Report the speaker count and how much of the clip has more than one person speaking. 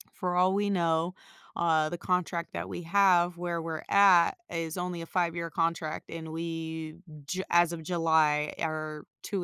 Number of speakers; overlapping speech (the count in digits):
1, no overlap